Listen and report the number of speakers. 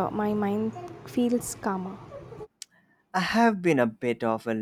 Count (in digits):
2